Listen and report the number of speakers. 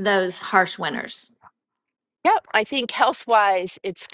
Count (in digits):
2